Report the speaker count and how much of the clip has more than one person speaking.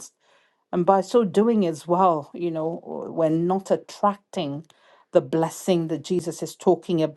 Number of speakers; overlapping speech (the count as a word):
one, no overlap